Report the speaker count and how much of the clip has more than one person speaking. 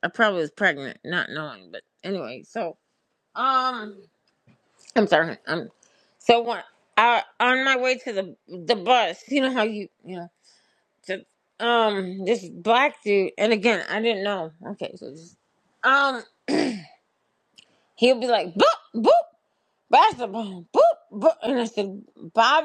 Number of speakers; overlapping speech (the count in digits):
1, no overlap